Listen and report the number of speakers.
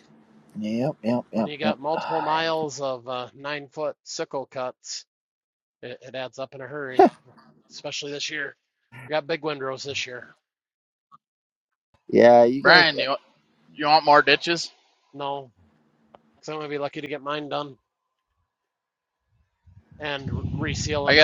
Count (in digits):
3